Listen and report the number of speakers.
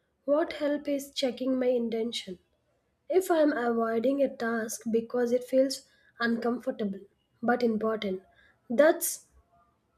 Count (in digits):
1